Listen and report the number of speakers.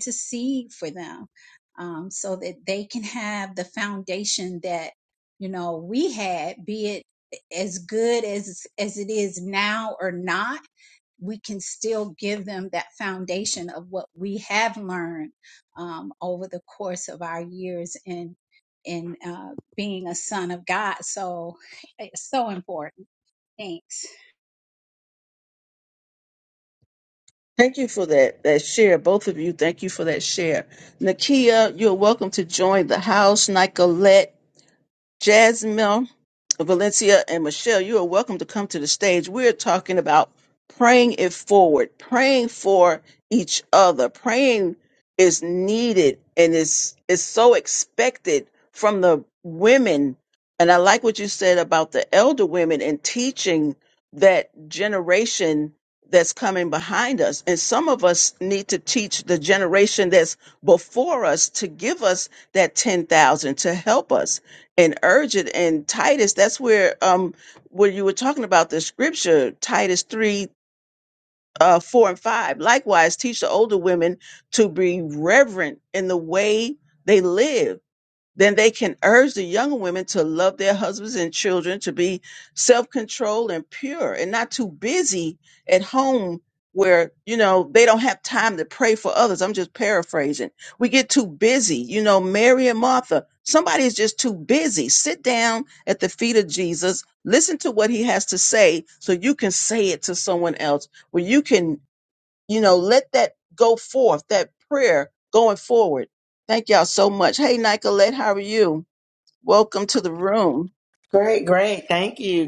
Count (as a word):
three